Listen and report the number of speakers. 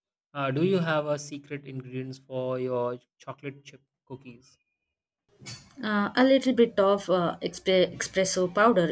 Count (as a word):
two